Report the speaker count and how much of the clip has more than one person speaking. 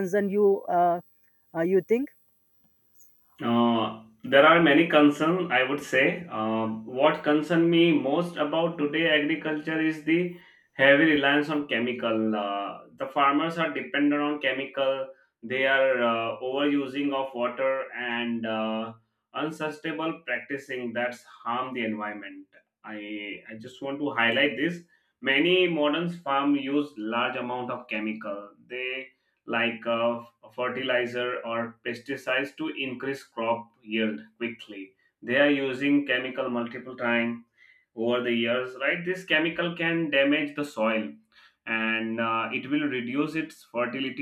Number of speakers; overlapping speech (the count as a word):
two, no overlap